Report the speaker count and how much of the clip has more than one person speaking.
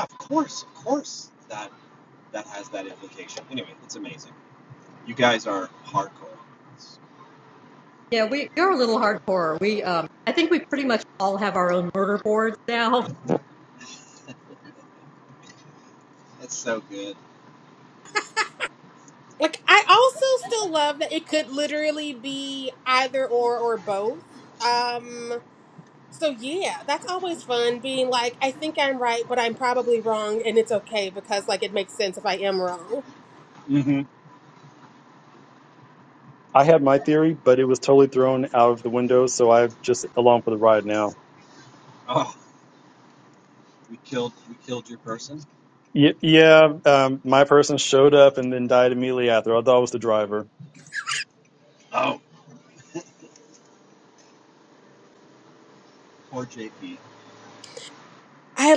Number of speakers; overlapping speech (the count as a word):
four, no overlap